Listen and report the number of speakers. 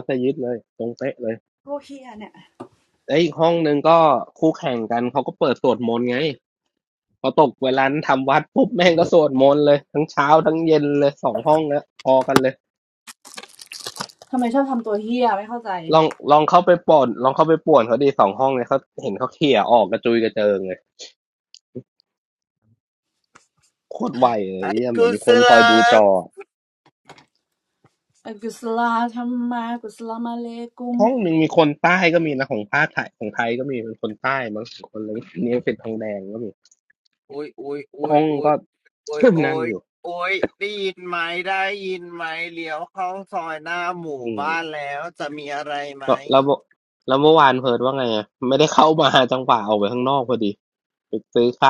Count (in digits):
3